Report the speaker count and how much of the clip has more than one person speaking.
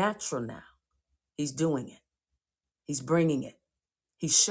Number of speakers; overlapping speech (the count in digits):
1, no overlap